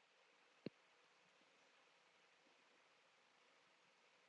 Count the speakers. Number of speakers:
zero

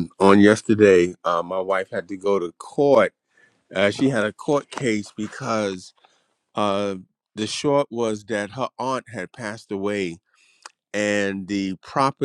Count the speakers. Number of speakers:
one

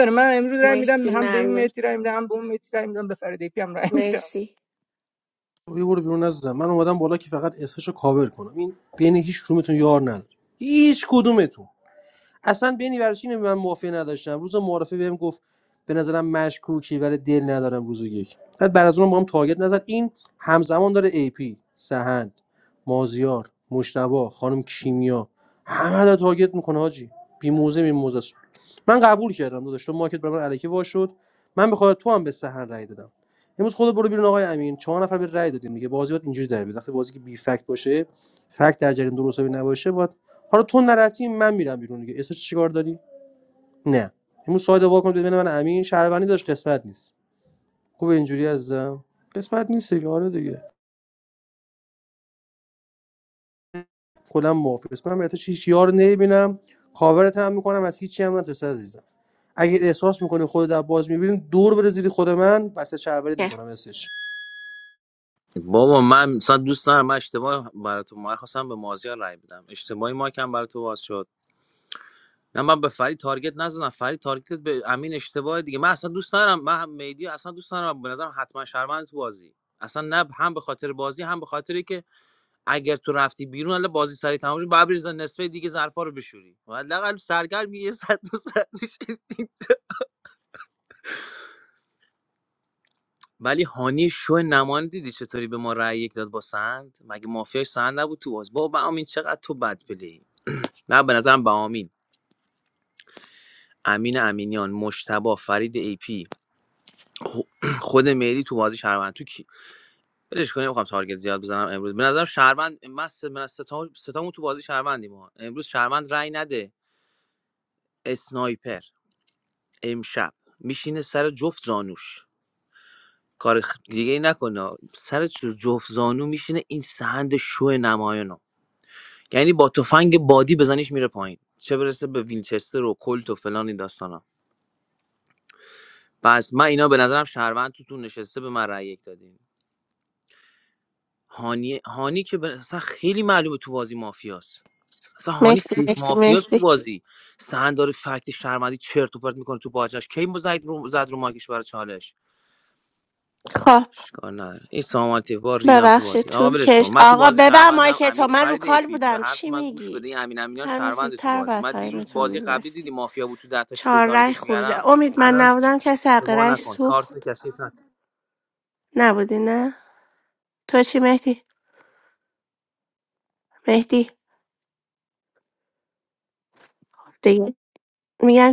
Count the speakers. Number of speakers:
four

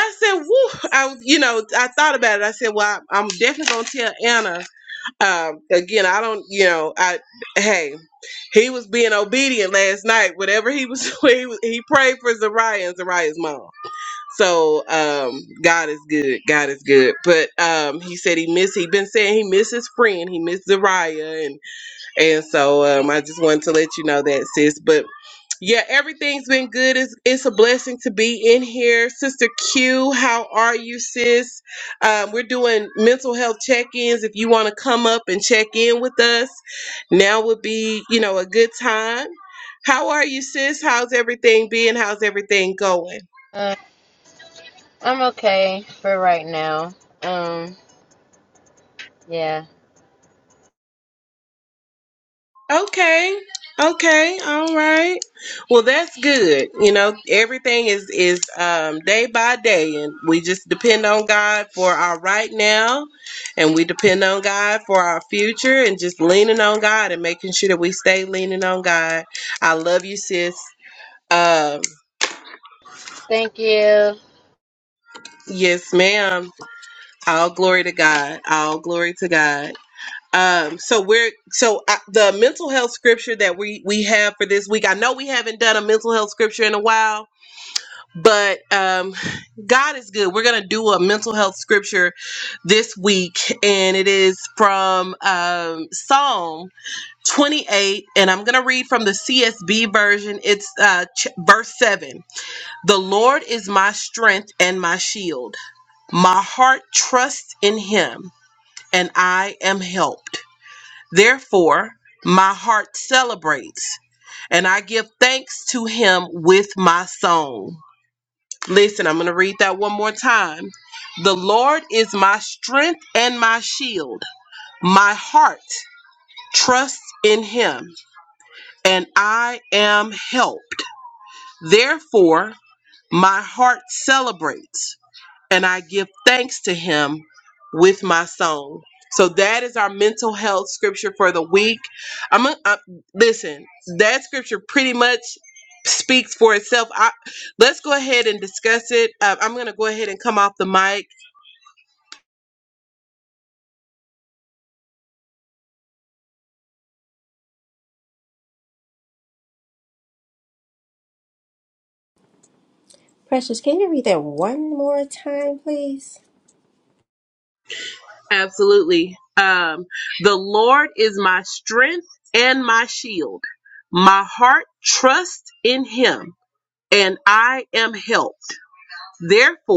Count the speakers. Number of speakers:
three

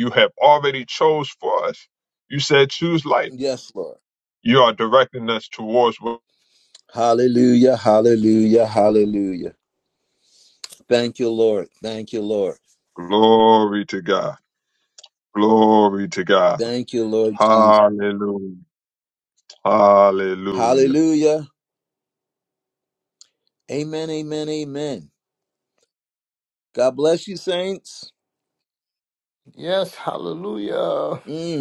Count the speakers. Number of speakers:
three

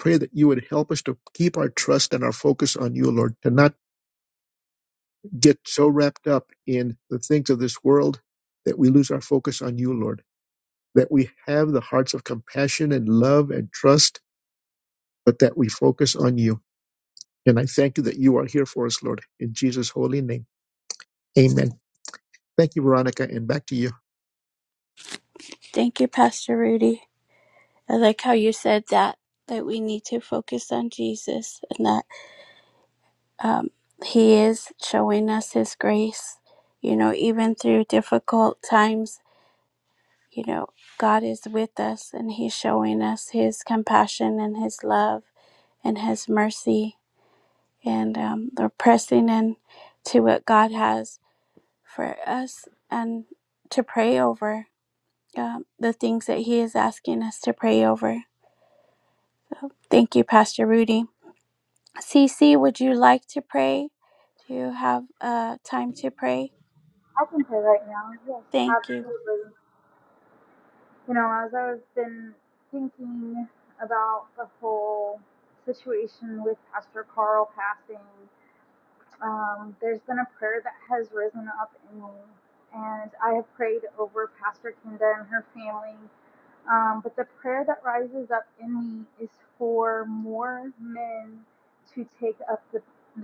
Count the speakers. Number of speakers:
three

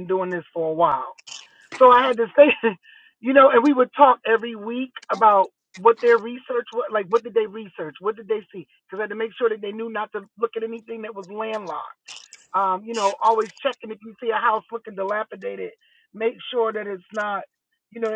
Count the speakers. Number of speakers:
one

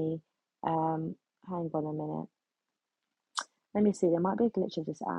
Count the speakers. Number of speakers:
one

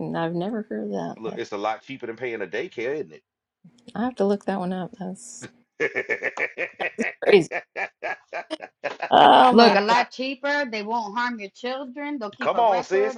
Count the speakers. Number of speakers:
three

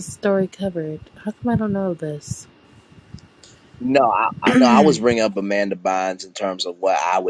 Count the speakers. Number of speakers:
two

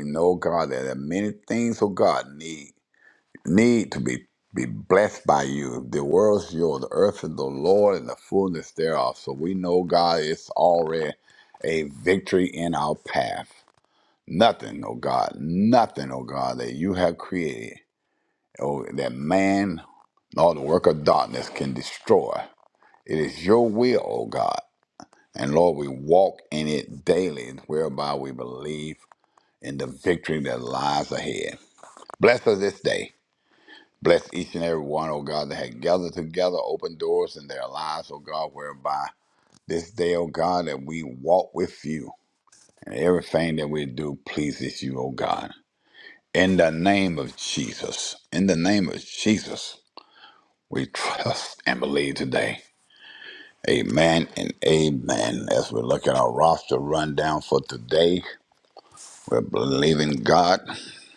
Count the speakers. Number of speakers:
one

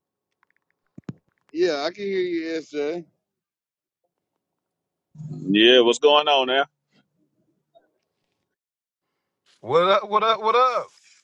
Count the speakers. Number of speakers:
three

